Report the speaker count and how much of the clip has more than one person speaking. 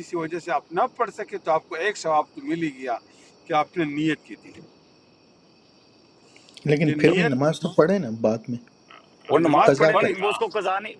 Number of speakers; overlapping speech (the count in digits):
3, about 12%